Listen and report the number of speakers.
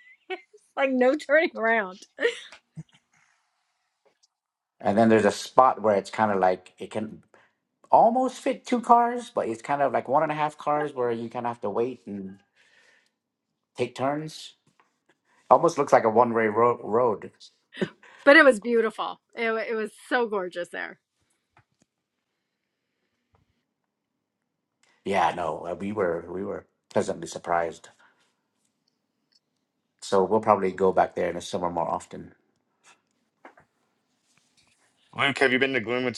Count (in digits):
3